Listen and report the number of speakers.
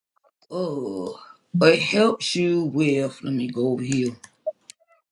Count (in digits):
1